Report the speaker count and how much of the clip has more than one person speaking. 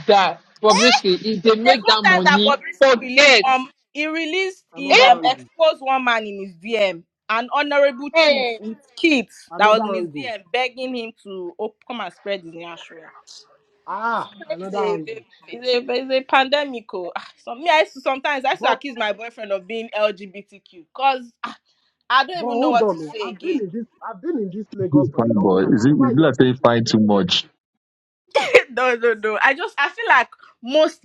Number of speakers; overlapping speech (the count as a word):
four, about 23%